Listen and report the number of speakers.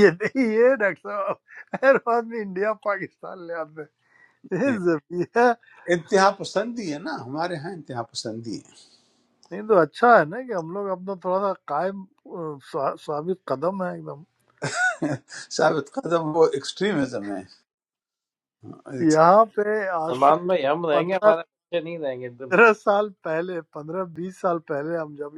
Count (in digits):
3